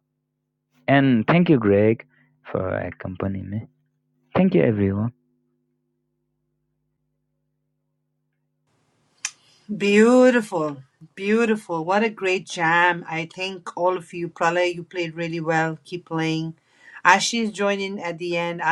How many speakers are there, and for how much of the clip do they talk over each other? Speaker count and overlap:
two, no overlap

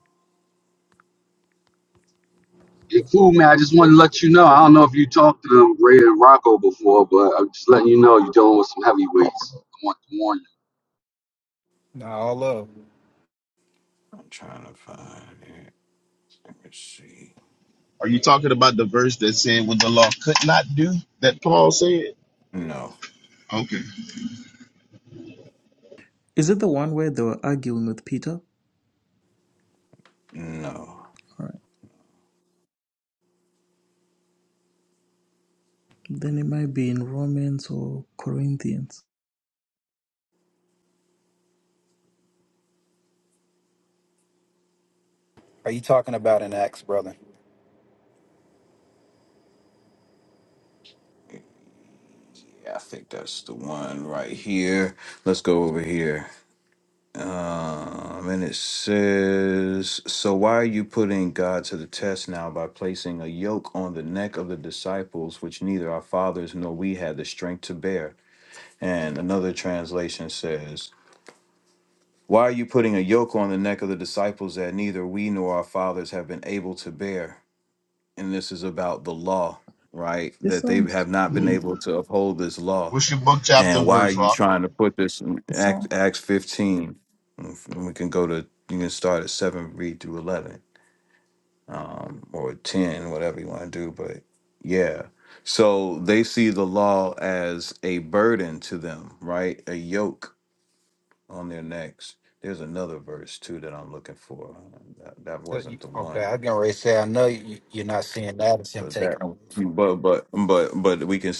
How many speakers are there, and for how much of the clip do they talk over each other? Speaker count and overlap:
five, about 3%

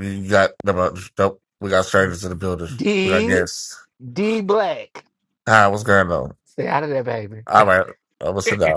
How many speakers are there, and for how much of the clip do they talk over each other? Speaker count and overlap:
two, about 5%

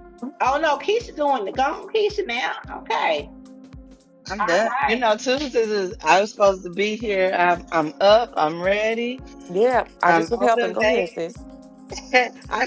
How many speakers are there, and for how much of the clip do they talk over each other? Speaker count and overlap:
three, about 13%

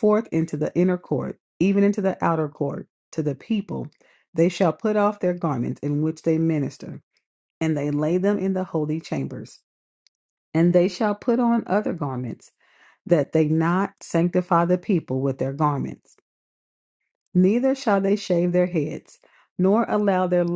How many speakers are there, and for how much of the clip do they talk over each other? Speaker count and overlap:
one, no overlap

